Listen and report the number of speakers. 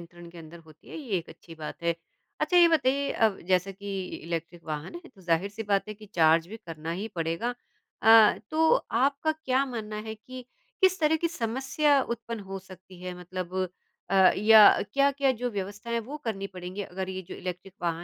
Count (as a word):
one